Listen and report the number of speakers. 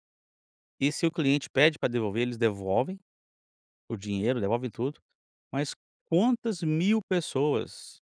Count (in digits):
1